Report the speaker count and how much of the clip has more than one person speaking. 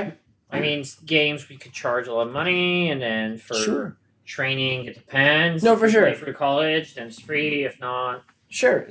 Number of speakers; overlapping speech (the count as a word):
two, about 12%